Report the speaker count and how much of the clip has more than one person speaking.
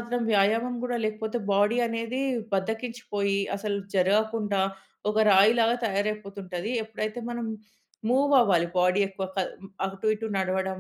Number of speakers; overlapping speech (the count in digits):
1, no overlap